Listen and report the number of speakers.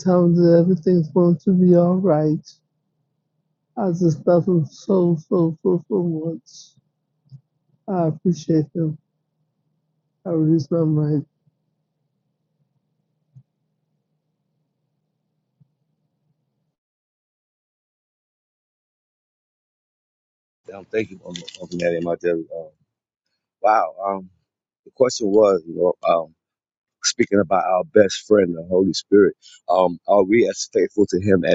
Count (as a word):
two